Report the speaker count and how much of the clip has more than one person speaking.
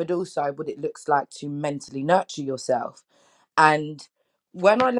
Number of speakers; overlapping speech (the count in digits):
1, no overlap